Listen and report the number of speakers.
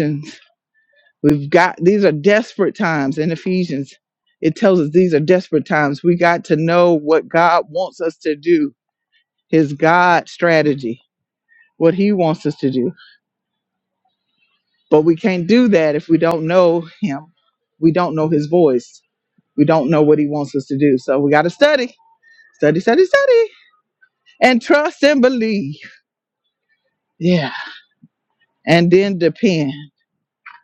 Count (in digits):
1